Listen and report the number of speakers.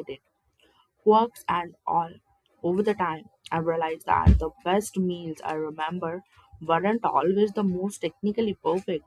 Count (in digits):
1